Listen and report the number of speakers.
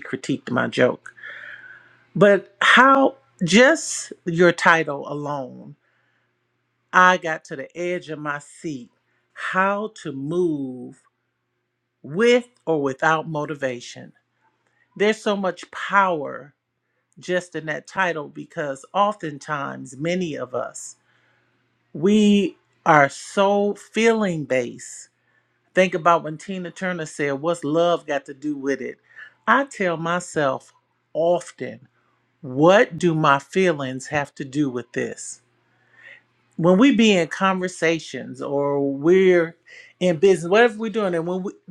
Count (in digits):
1